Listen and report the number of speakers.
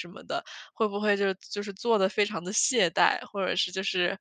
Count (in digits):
1